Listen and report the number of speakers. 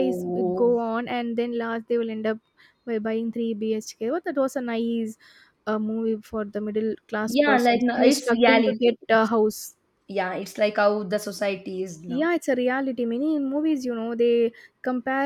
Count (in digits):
2